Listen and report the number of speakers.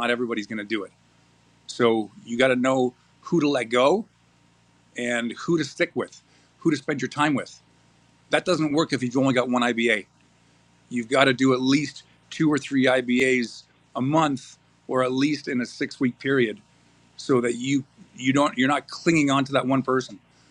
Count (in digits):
1